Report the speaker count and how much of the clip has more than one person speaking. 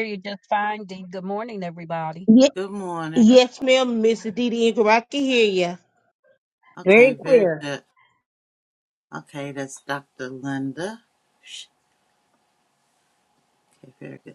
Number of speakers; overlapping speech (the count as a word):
three, about 6%